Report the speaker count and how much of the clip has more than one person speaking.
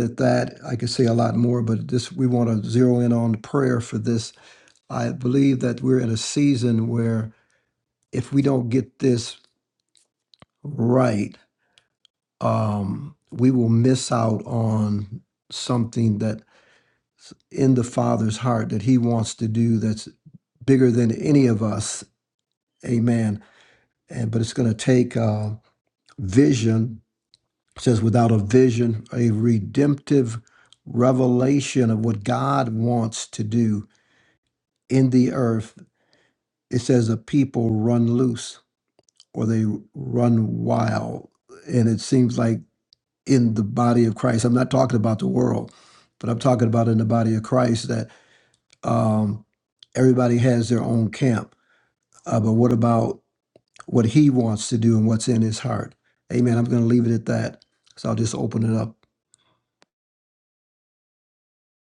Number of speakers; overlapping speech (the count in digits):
1, no overlap